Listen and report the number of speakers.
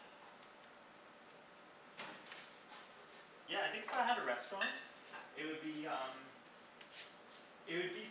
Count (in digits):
1